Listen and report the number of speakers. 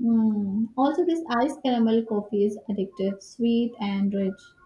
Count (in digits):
1